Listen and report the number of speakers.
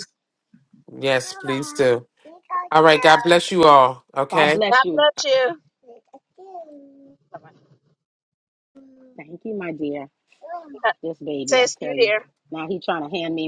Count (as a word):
three